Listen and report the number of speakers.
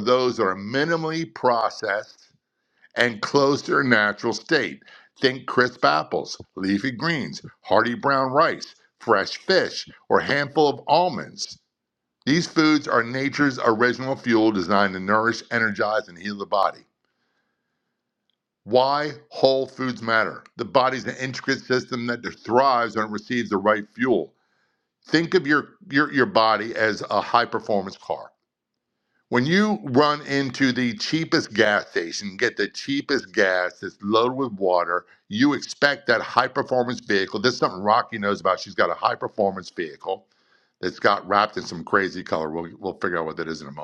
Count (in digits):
1